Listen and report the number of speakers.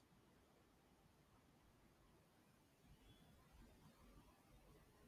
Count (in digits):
0